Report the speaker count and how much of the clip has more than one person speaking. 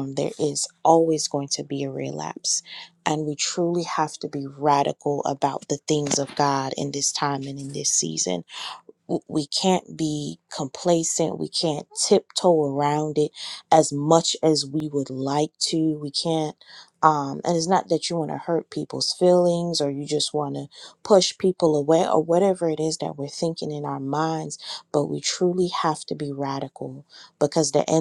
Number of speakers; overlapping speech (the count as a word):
one, no overlap